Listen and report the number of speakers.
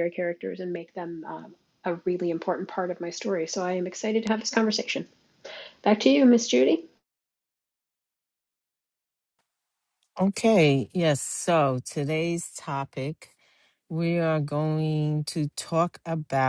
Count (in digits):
2